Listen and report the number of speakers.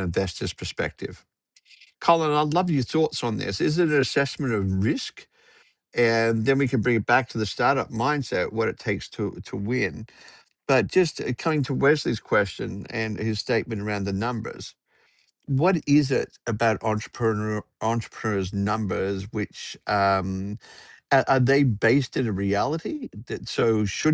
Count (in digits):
1